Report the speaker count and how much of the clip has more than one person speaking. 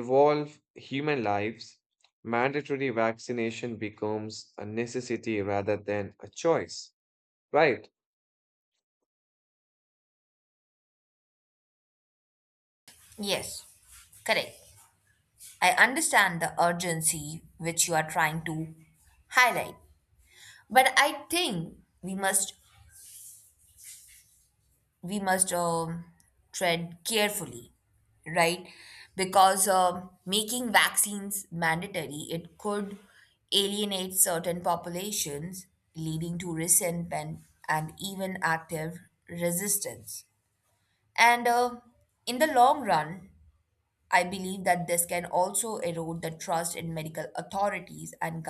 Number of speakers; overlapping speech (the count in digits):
2, no overlap